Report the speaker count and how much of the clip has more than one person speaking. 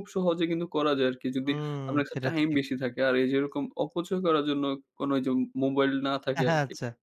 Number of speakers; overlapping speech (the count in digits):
2, about 24%